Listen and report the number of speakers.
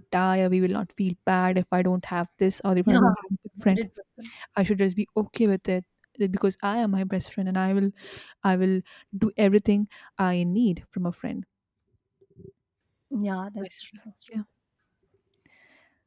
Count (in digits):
2